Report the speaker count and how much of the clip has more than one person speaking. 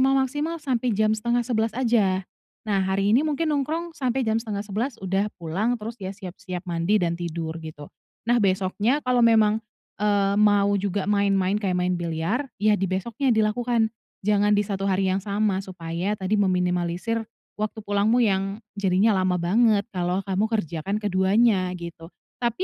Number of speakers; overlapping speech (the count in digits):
1, no overlap